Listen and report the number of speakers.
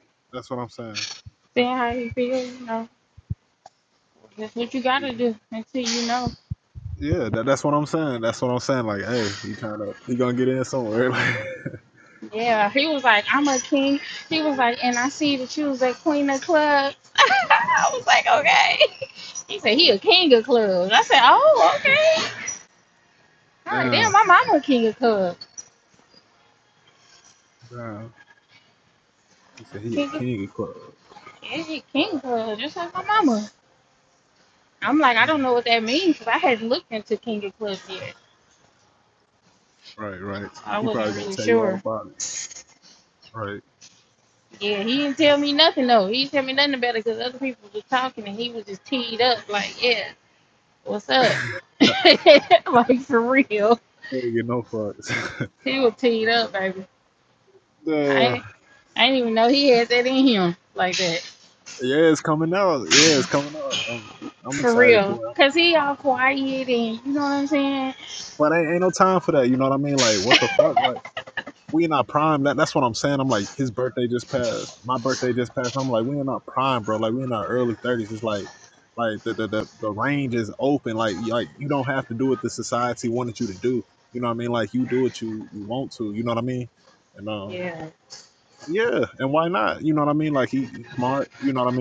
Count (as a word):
two